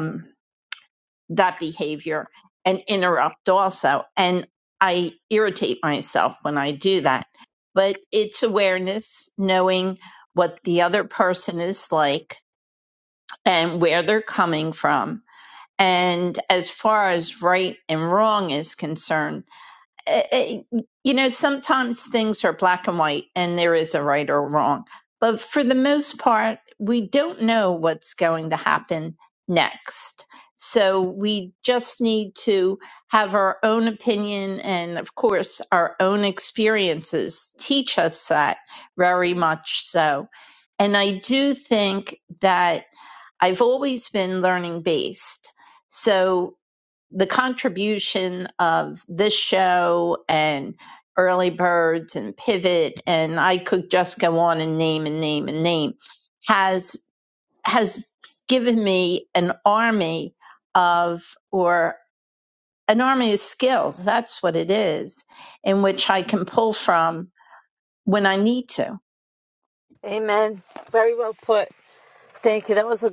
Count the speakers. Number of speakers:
2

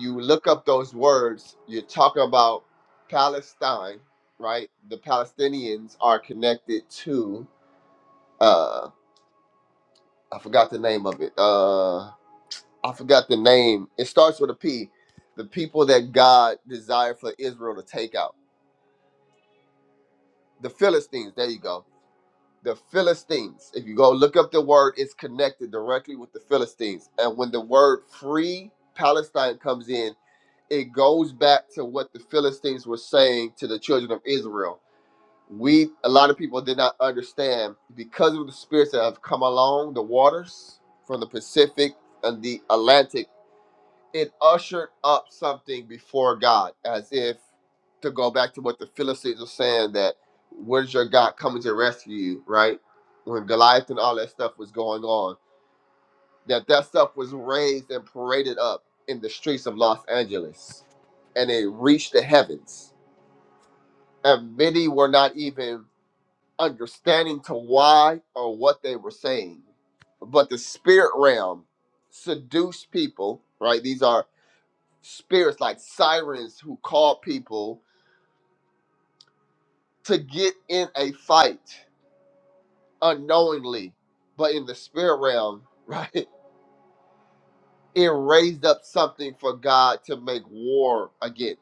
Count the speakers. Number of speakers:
1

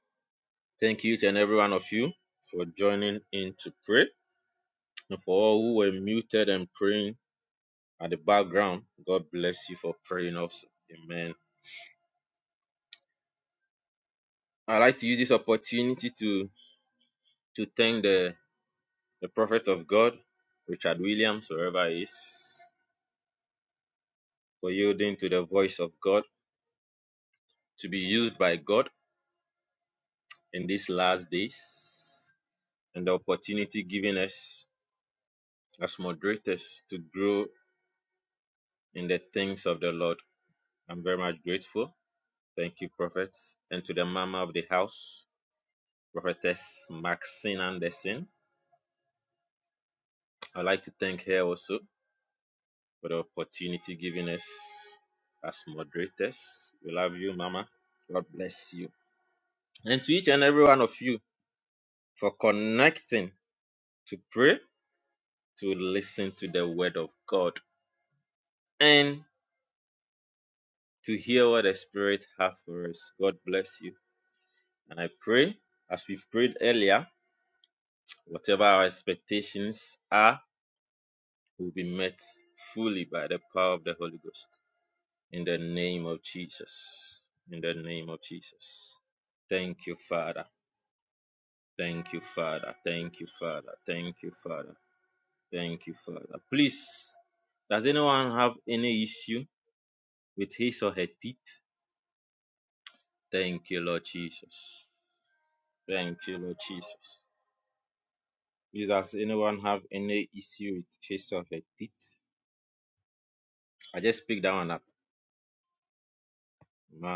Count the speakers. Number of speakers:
1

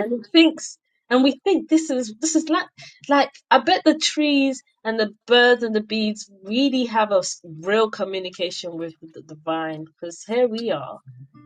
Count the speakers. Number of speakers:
1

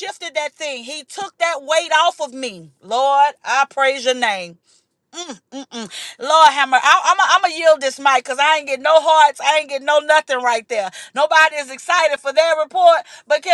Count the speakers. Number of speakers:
1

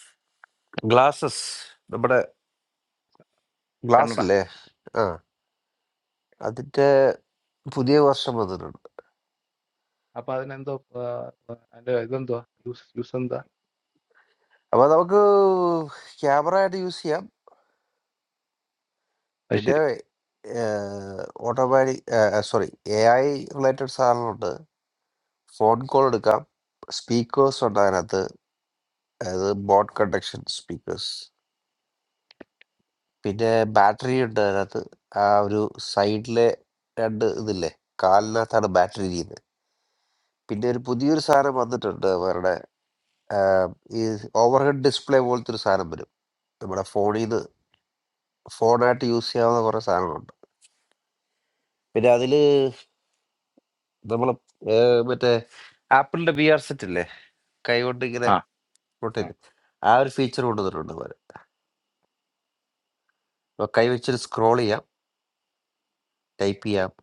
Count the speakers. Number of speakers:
2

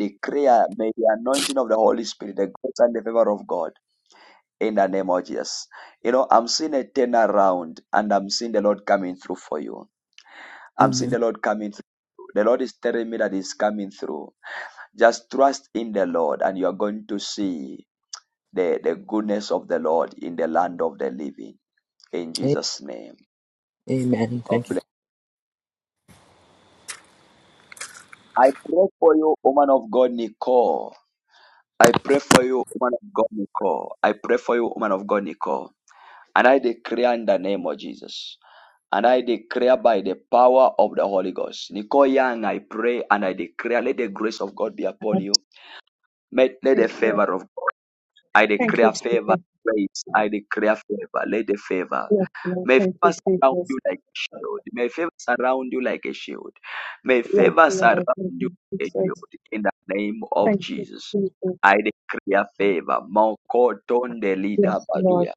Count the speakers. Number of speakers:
3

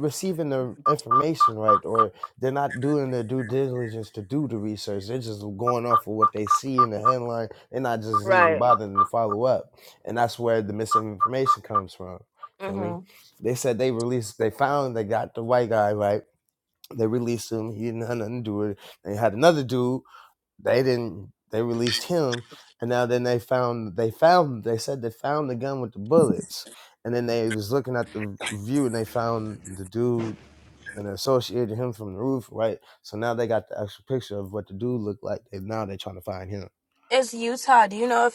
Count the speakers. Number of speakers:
2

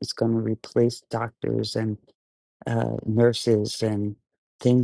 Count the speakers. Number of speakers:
1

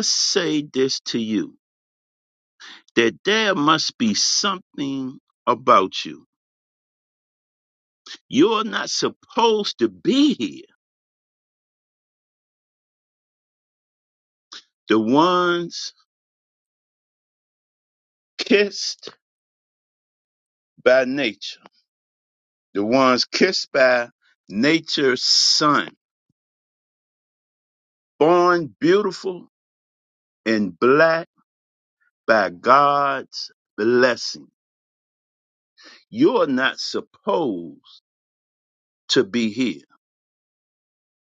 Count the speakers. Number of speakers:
1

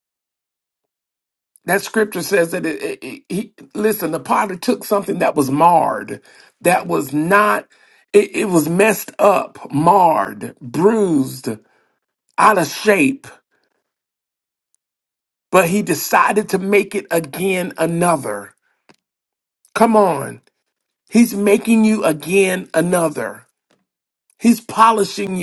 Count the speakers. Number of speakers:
1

